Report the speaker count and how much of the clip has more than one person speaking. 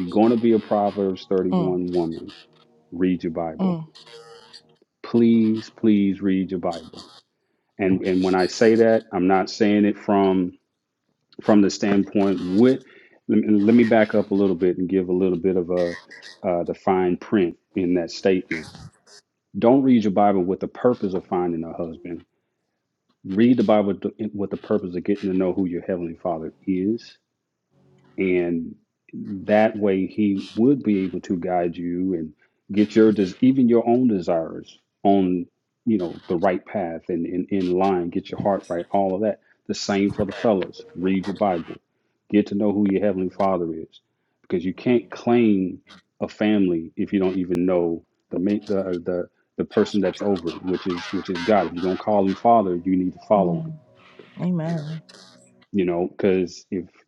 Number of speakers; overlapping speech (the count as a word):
two, about 1%